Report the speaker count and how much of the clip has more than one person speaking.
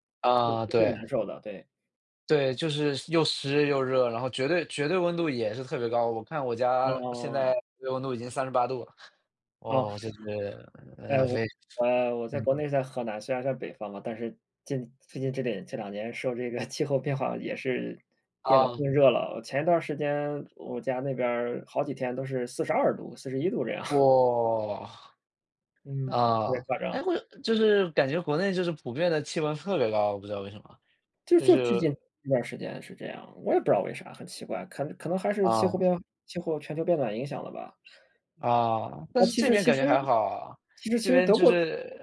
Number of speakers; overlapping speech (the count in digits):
2, about 13%